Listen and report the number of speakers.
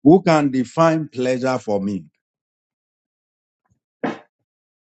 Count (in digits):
1